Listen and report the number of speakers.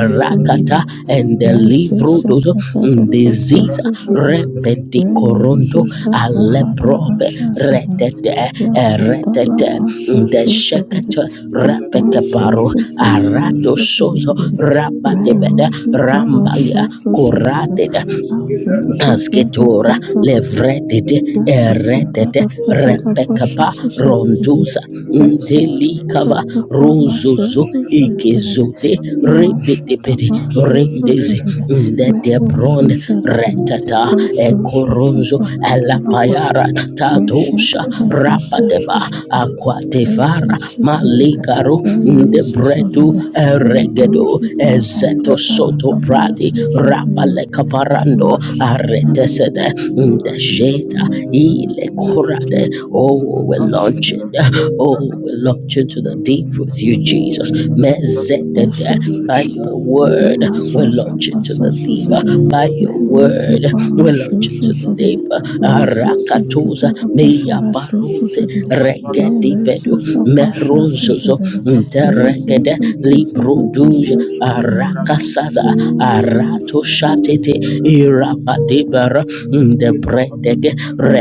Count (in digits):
2